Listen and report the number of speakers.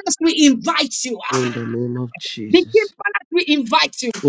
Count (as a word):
two